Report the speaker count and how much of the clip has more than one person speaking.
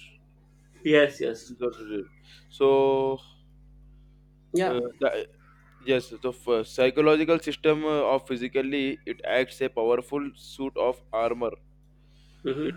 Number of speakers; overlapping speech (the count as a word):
two, about 2%